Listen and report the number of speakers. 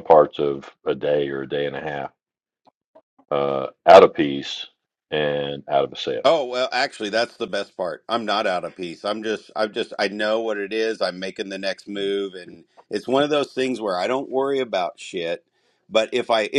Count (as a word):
two